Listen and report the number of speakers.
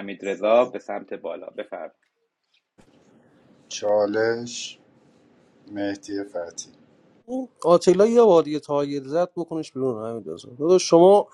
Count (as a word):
three